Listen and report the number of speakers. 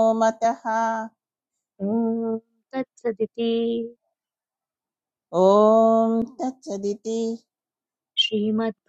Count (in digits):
2